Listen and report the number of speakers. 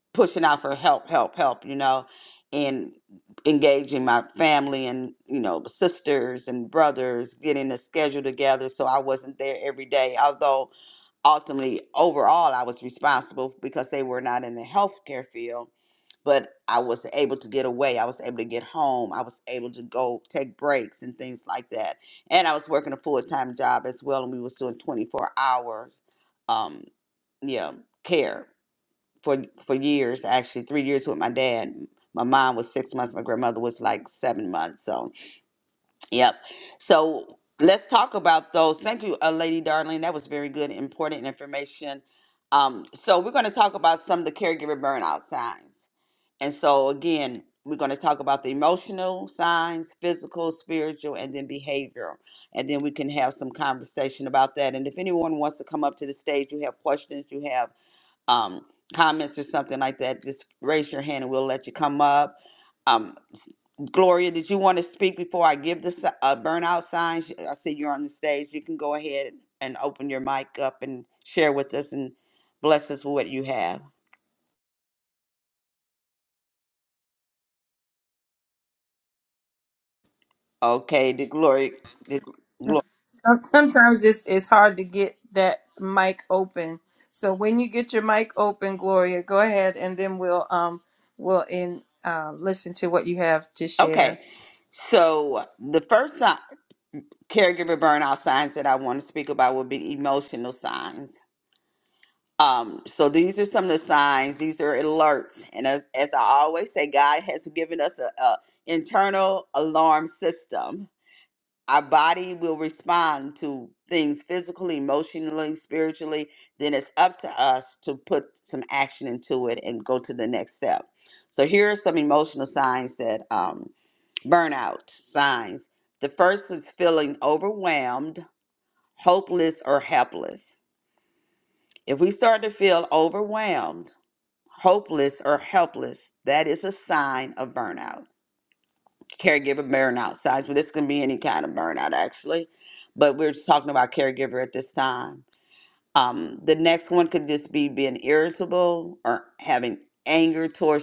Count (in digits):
2